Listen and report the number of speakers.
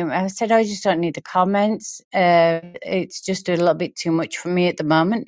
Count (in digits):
1